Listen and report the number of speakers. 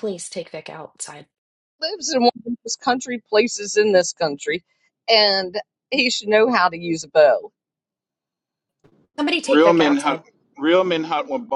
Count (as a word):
three